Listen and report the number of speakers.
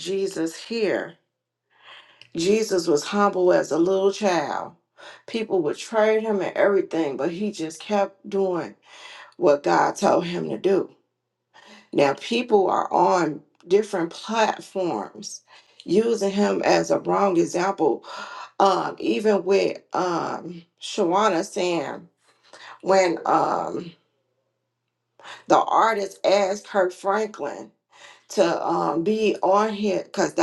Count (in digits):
1